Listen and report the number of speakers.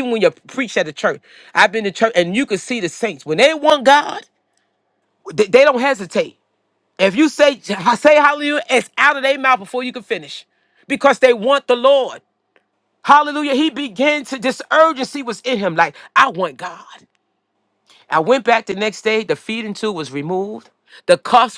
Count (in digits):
1